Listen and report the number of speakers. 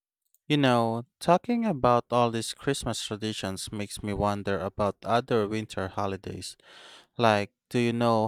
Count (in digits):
1